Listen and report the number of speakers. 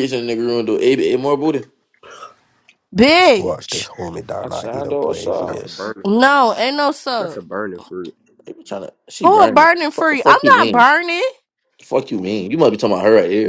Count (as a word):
four